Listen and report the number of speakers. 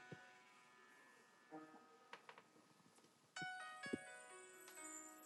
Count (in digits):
0